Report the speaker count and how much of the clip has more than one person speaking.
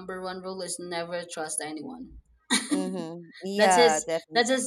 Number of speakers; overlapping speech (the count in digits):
2, about 18%